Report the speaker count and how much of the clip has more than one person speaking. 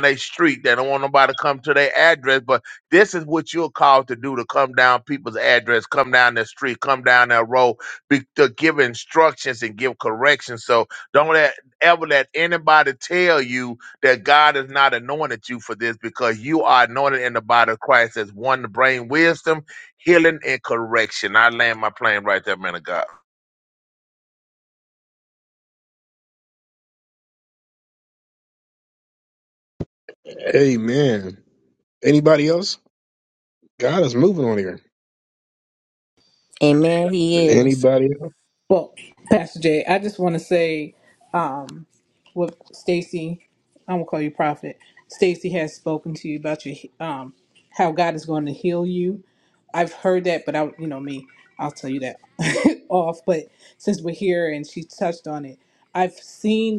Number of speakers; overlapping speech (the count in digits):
4, about 1%